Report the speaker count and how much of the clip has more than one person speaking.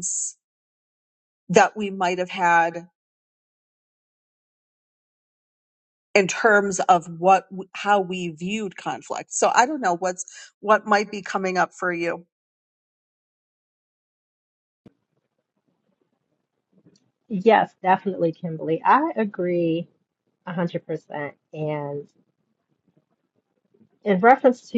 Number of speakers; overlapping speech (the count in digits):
2, no overlap